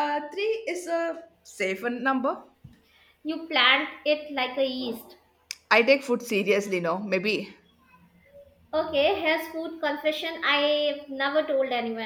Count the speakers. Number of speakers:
2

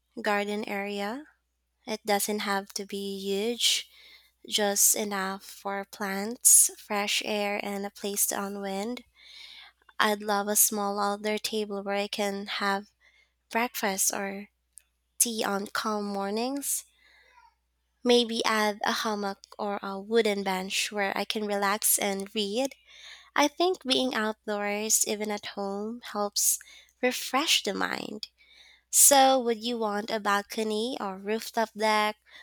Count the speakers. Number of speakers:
1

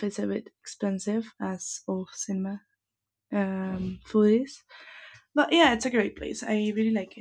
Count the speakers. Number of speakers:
1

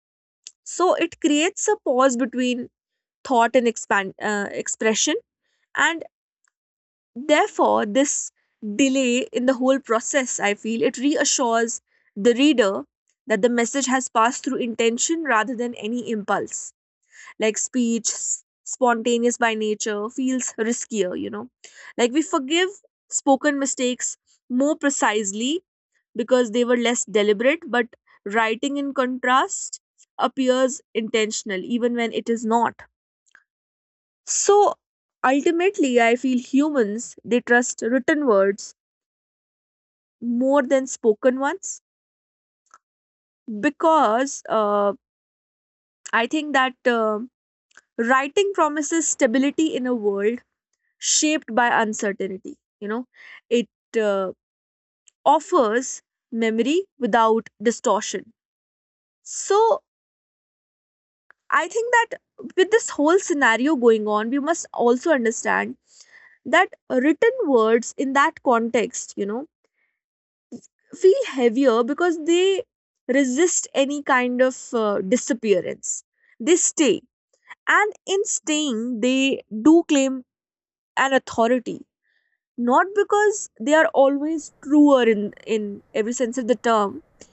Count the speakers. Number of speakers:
1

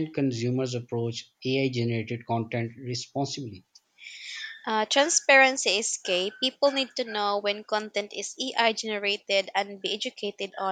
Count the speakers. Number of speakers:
2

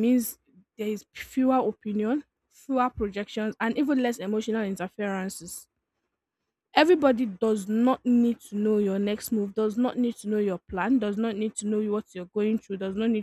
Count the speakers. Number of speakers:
1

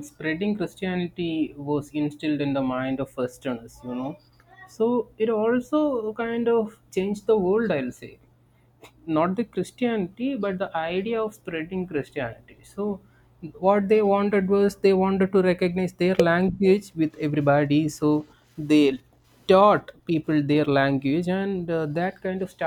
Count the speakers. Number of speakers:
1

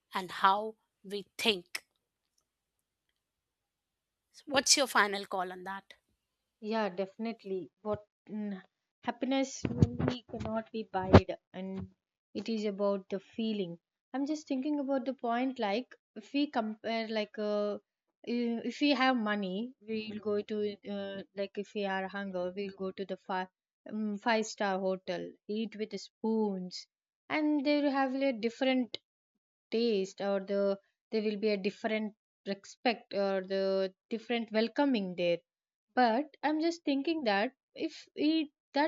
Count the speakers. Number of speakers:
2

